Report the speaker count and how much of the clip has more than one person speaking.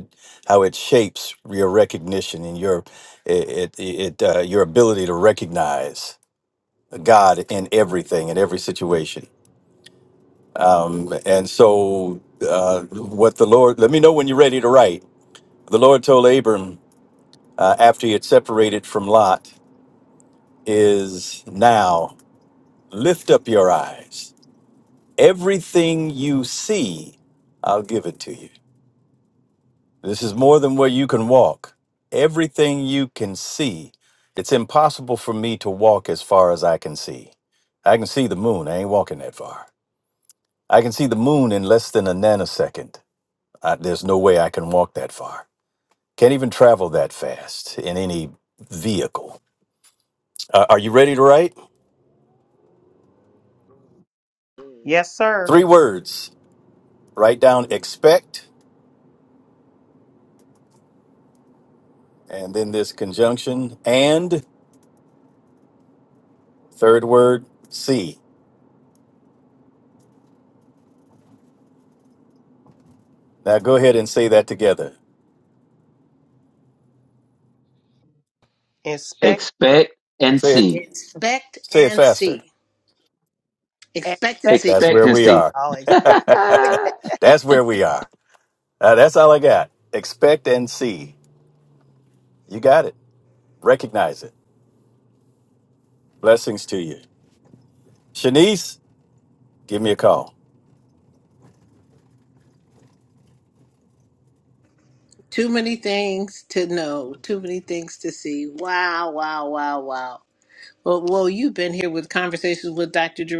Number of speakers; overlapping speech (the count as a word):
four, about 2%